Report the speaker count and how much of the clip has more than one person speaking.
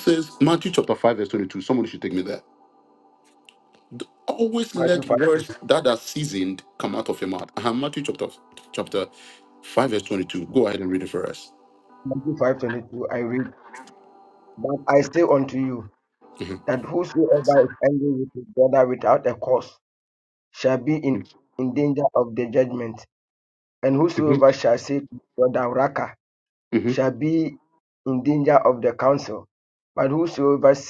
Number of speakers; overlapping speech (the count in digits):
2, about 3%